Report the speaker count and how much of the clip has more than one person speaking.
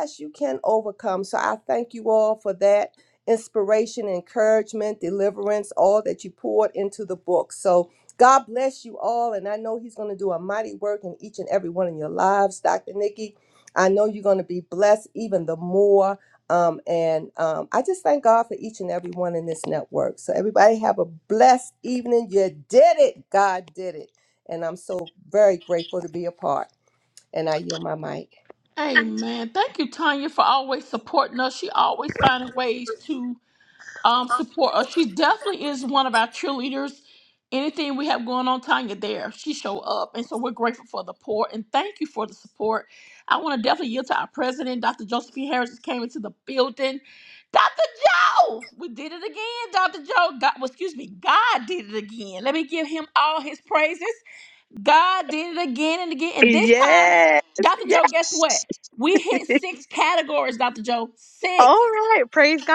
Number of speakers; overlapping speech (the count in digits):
3, about 2%